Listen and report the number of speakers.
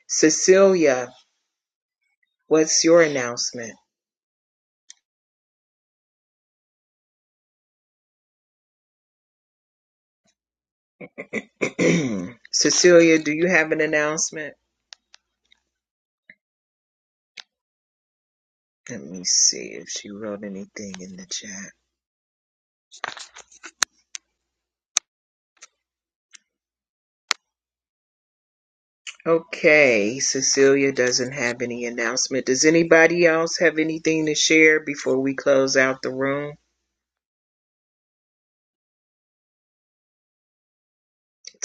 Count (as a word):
one